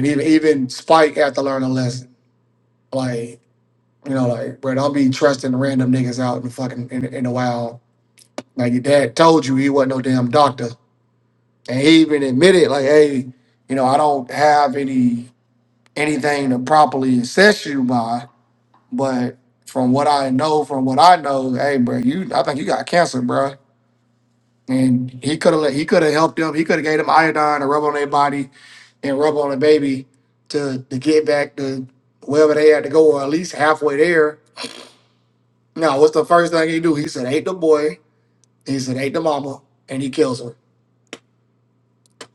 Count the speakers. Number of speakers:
1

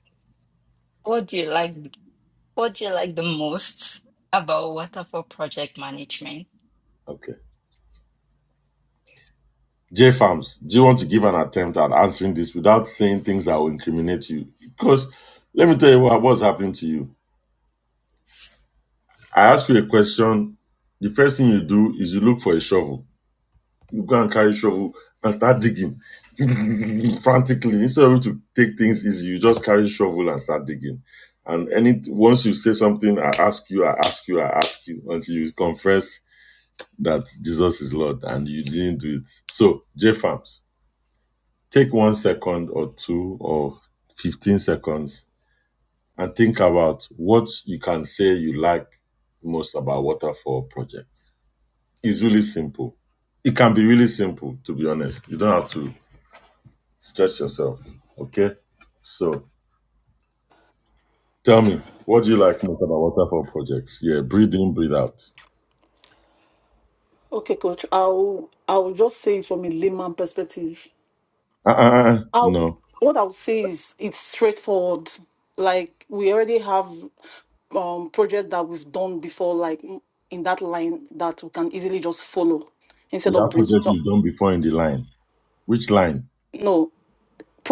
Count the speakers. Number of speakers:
3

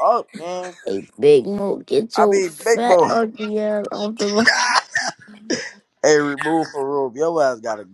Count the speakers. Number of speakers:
2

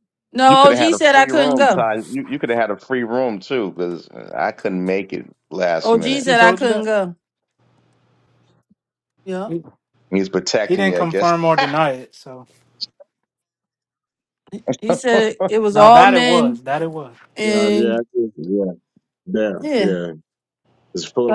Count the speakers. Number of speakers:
4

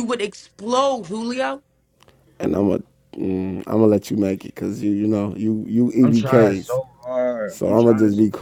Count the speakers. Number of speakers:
3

